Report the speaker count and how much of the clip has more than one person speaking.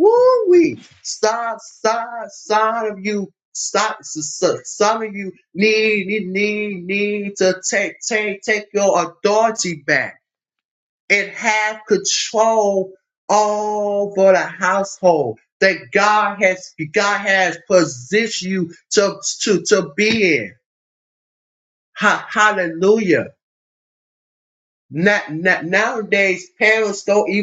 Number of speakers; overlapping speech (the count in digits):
1, no overlap